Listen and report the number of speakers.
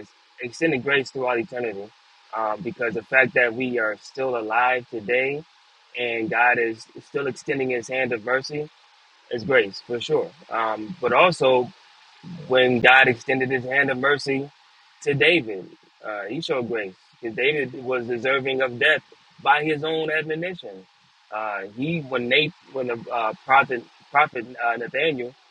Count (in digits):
1